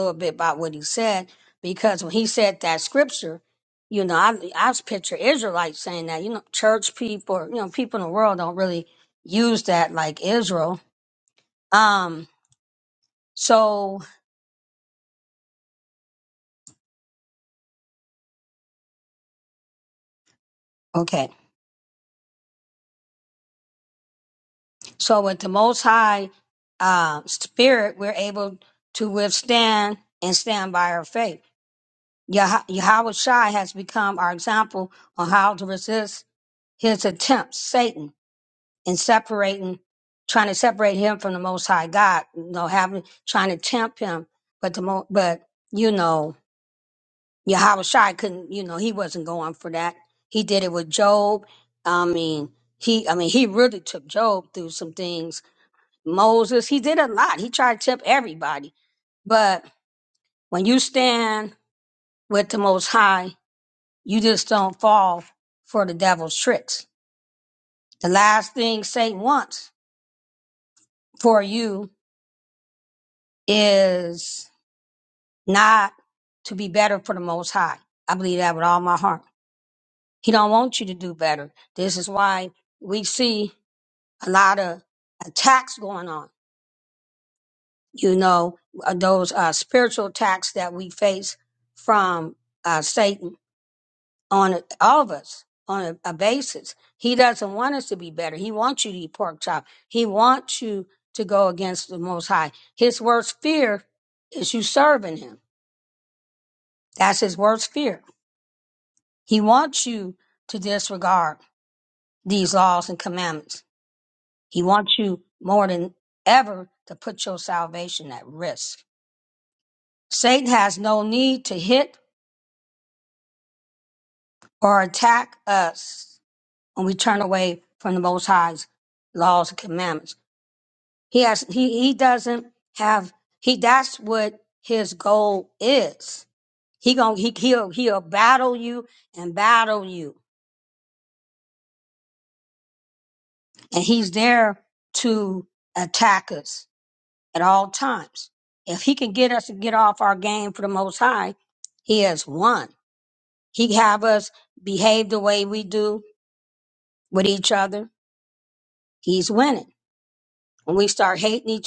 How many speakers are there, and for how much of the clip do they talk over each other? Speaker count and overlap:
1, no overlap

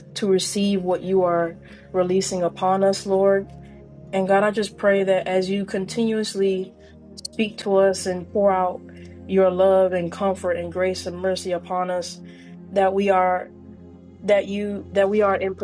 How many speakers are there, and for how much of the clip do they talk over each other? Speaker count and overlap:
1, no overlap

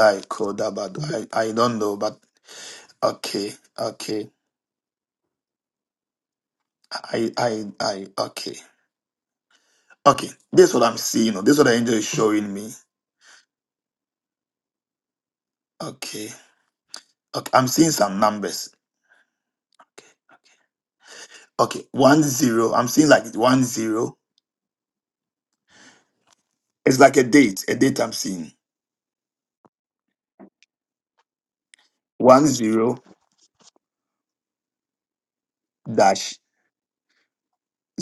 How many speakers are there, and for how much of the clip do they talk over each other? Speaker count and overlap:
1, no overlap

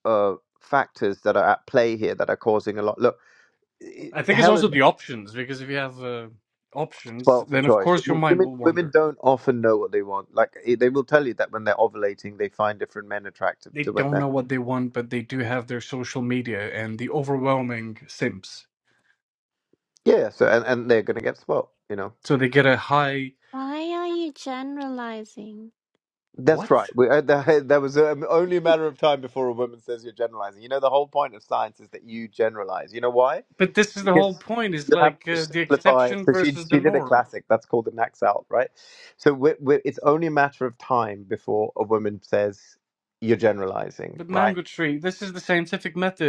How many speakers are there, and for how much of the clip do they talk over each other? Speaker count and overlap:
3, about 12%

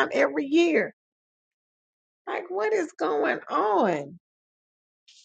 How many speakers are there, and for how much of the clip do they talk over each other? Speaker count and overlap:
1, no overlap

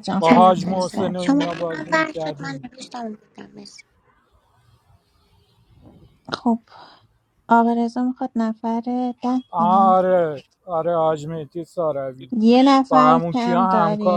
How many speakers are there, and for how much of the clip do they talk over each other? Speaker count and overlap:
3, about 30%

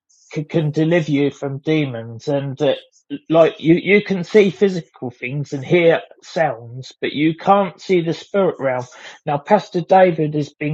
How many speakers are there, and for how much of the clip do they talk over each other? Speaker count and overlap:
1, no overlap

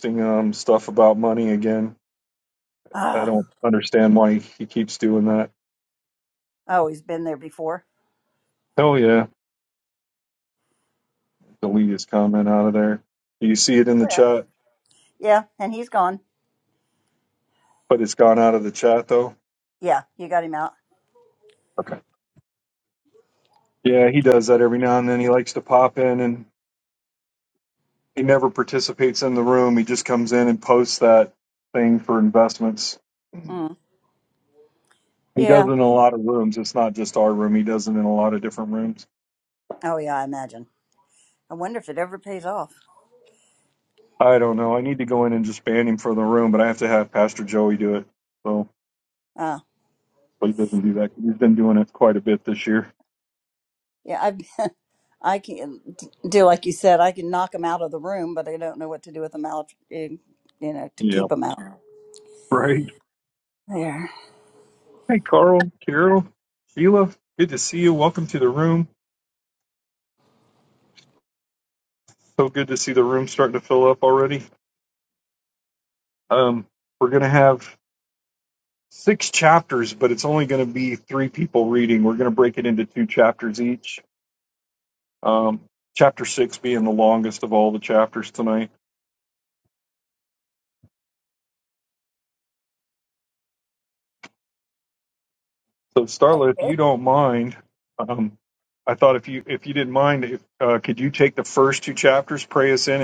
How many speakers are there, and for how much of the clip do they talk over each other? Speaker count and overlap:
2, about 1%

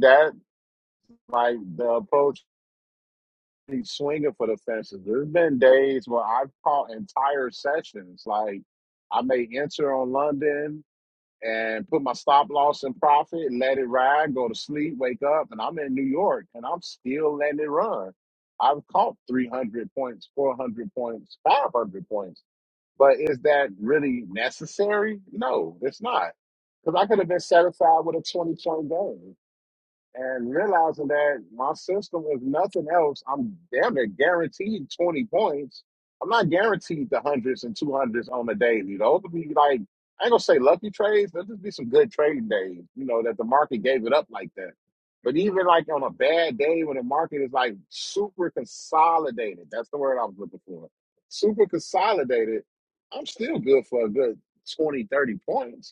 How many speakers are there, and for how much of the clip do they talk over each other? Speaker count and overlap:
1, no overlap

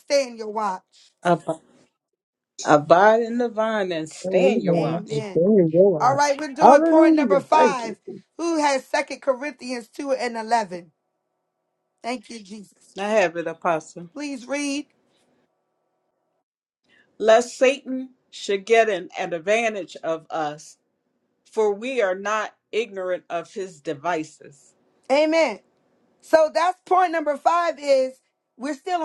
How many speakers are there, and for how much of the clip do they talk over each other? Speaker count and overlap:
3, about 9%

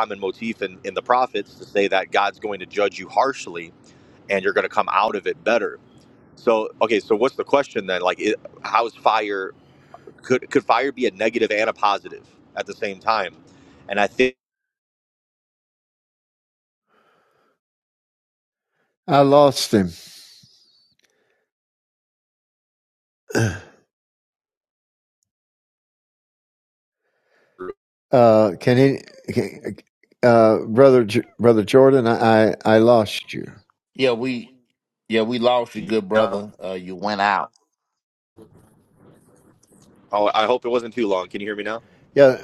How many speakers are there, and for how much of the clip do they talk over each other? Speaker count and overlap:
3, about 1%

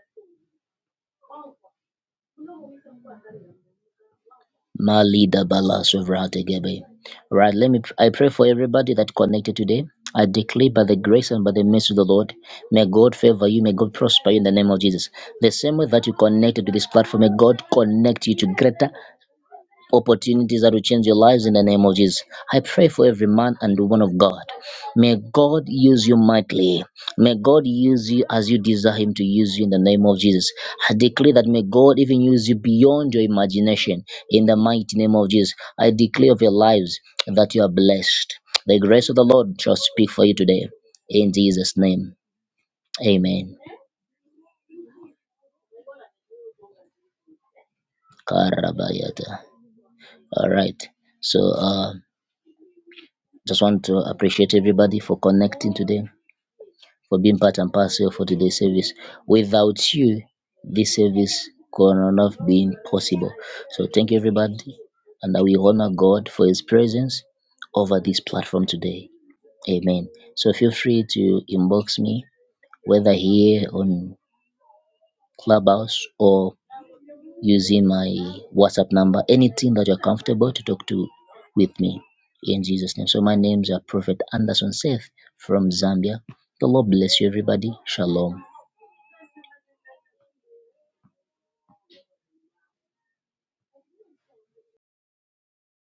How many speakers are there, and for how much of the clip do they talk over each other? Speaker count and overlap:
1, no overlap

